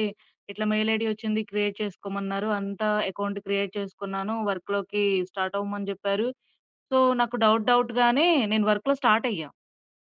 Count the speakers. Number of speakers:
1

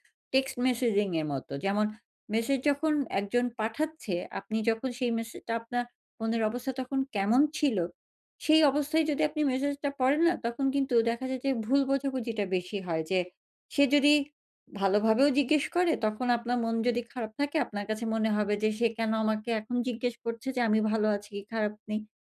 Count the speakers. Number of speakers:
1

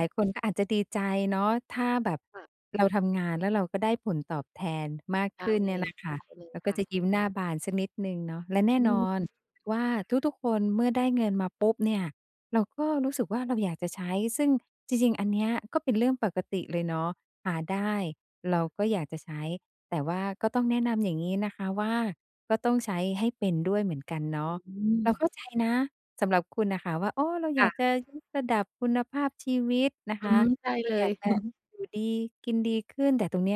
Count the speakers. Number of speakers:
2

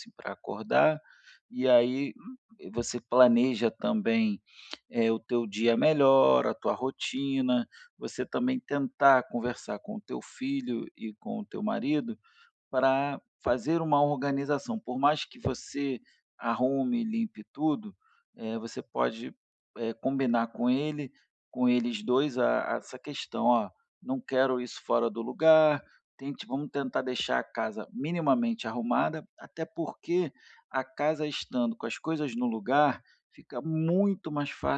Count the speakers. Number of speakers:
1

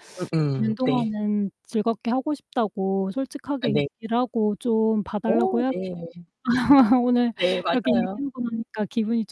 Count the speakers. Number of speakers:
2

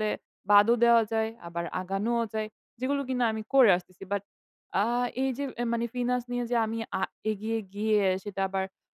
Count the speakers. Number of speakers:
1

